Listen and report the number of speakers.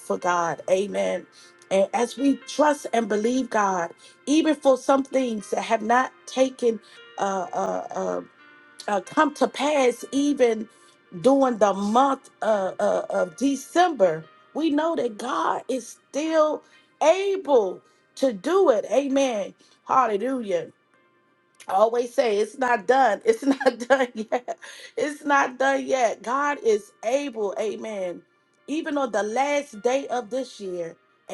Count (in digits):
1